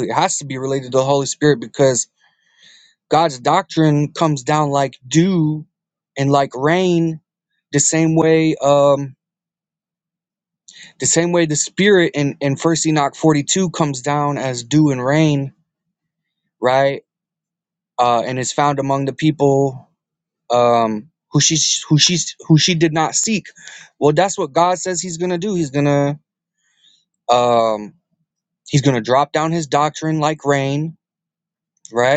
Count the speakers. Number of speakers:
one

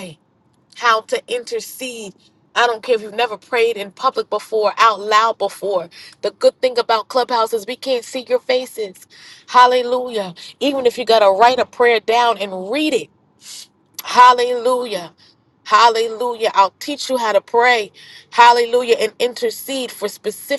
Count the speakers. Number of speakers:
one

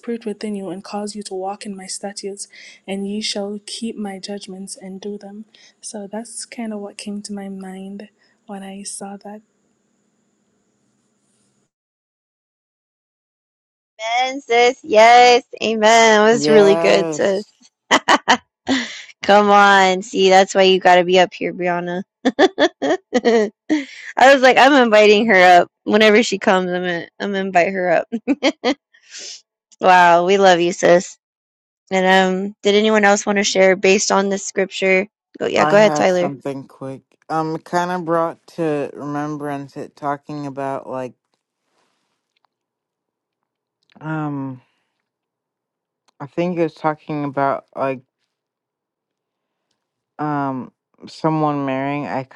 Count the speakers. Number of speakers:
three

